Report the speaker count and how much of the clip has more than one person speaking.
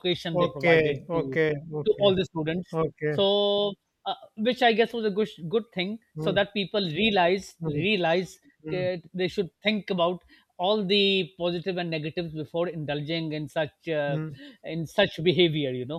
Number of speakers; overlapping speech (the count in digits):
2, about 12%